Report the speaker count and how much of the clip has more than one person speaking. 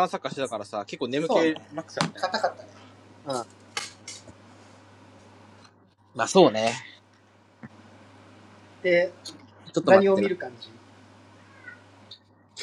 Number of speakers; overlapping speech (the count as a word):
two, about 6%